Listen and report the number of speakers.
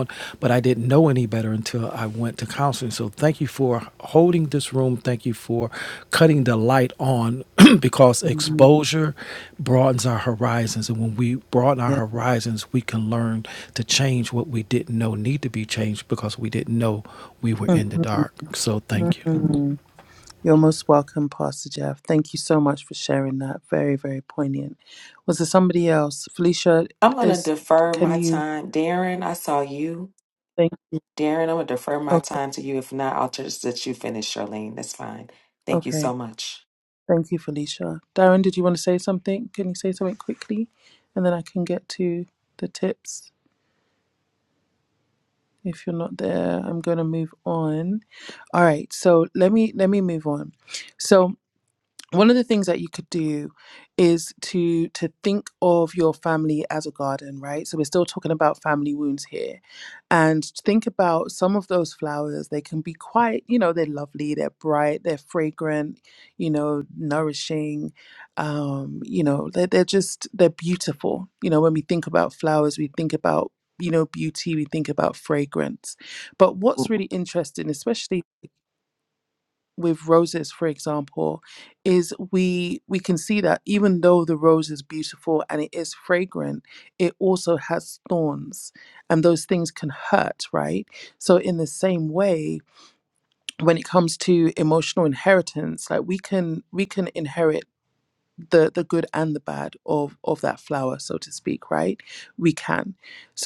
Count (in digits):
3